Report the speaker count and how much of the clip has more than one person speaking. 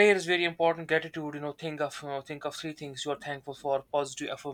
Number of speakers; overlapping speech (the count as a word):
one, no overlap